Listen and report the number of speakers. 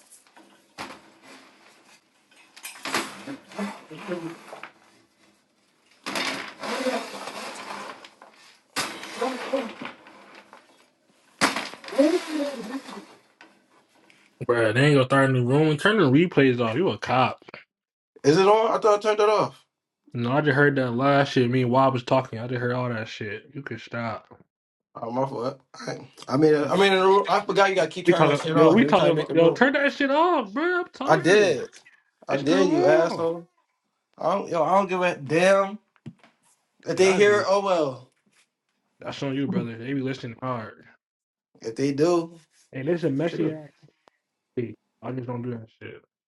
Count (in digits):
2